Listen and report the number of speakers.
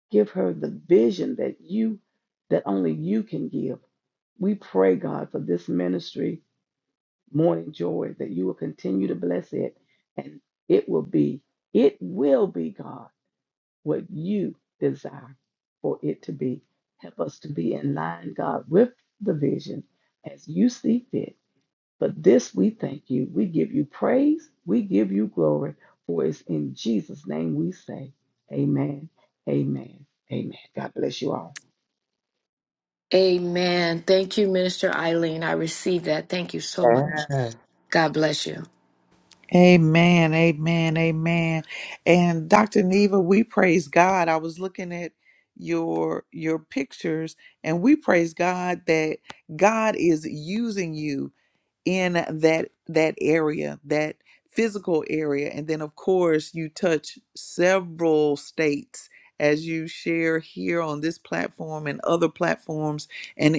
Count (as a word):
three